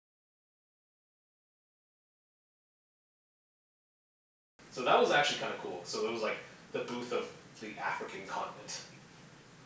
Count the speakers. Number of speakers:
1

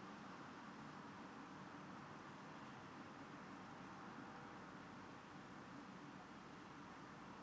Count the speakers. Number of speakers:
0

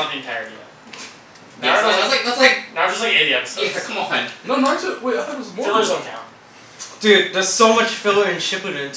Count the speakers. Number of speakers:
4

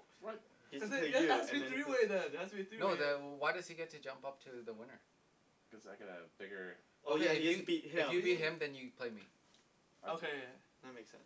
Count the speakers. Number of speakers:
4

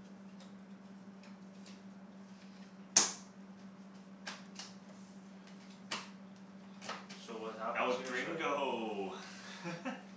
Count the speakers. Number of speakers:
2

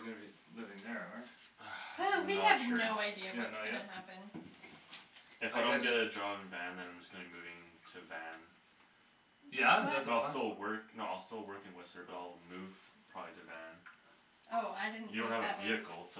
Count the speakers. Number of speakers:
3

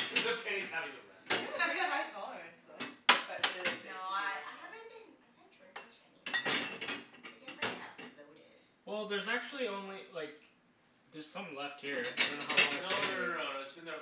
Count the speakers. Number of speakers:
4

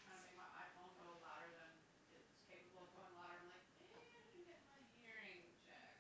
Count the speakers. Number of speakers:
1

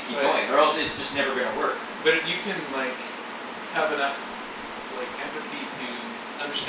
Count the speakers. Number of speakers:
2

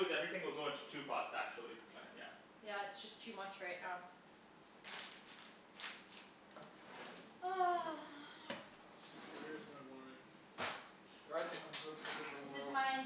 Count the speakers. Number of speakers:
3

